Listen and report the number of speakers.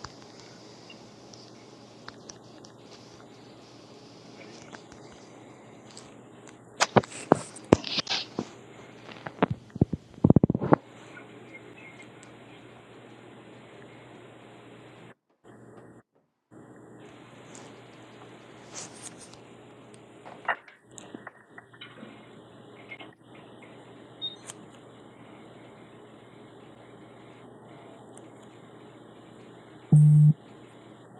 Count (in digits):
0